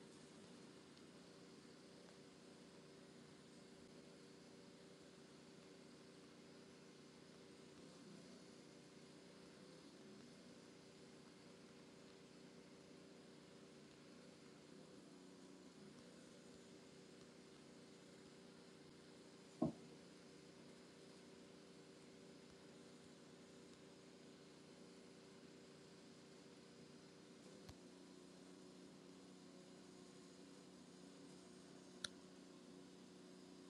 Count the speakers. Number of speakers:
zero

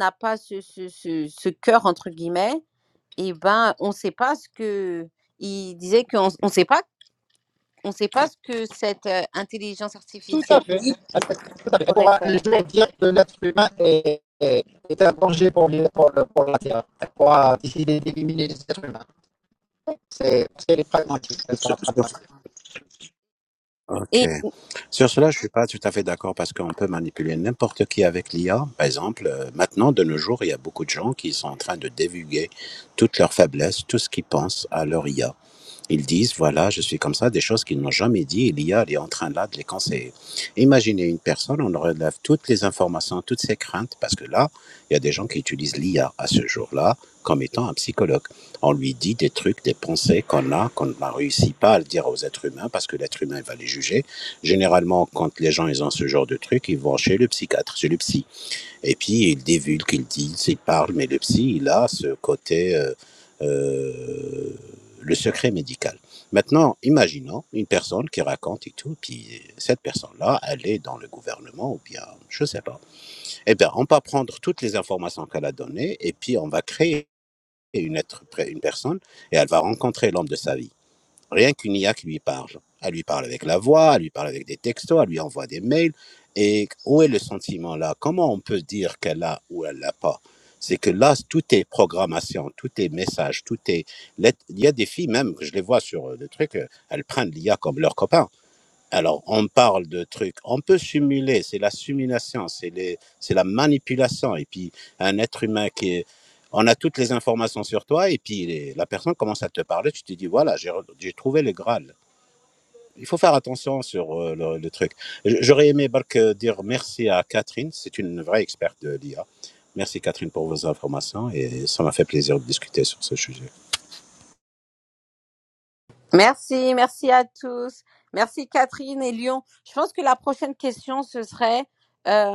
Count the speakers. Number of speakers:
three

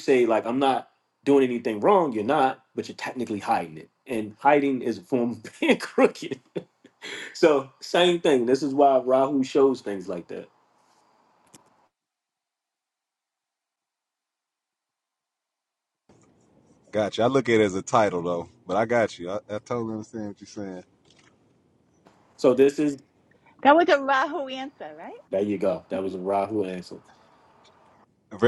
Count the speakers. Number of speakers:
three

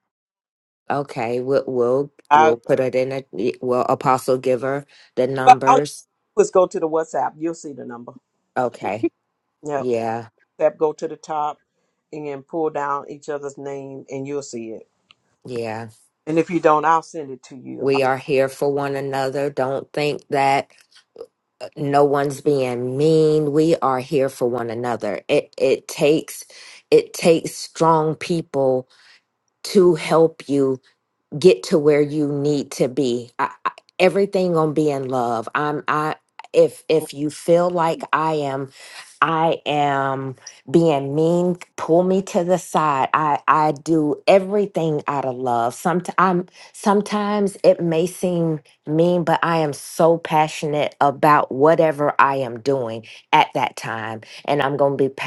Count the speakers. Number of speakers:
two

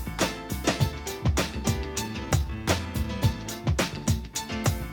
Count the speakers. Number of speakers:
zero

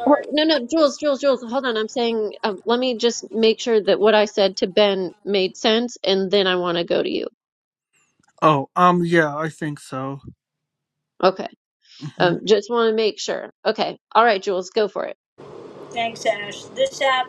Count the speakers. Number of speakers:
three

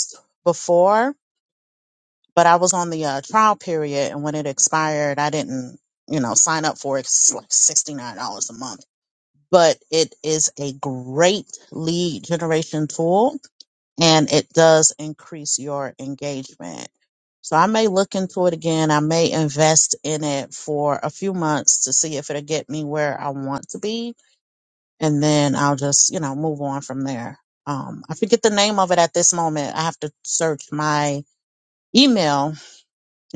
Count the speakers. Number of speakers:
one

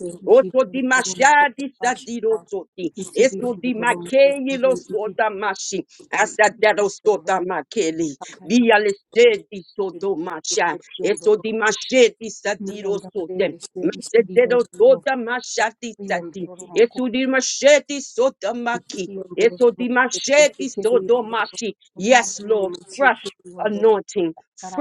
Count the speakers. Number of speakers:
two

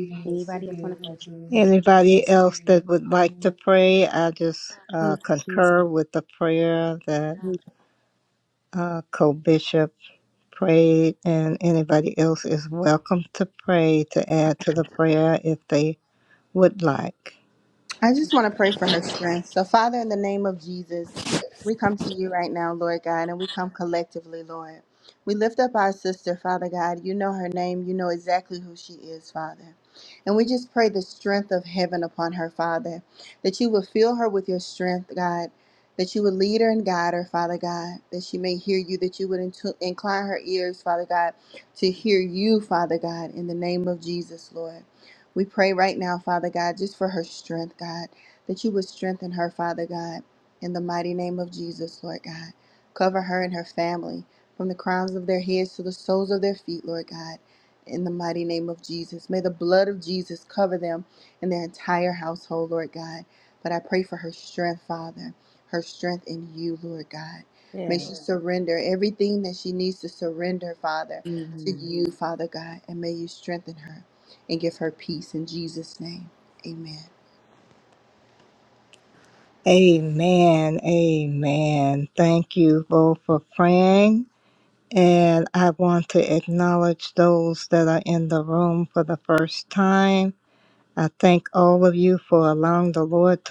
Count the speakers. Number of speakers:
three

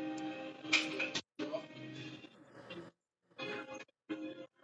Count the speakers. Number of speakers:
zero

